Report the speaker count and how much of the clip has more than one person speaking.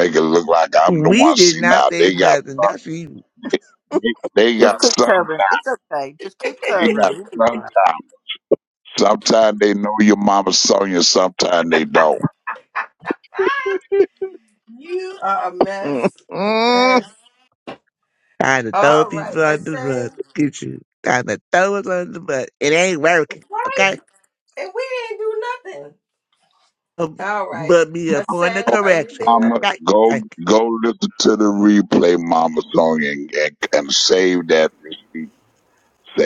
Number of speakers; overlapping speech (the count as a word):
four, about 22%